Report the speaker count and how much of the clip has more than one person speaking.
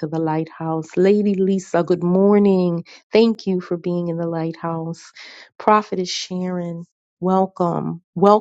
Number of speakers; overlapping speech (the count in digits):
1, no overlap